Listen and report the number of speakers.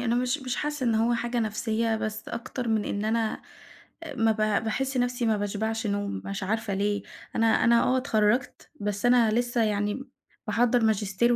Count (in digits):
1